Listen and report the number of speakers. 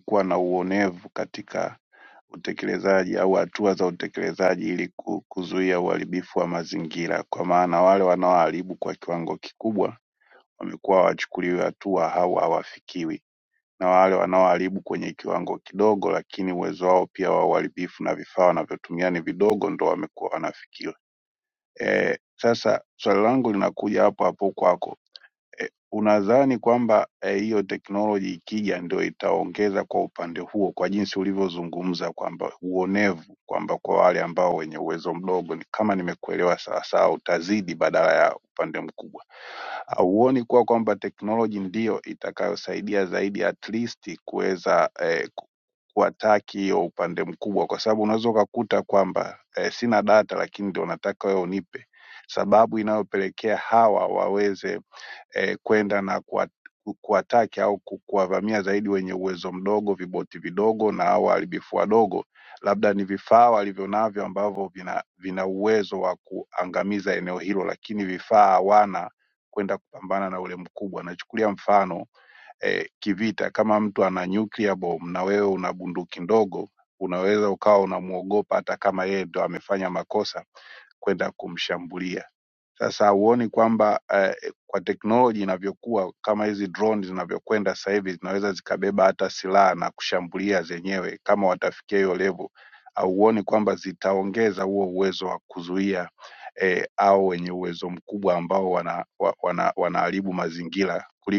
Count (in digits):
1